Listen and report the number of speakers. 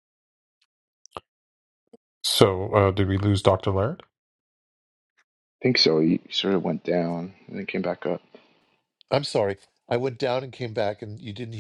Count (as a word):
three